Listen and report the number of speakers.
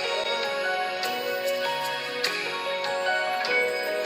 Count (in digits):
0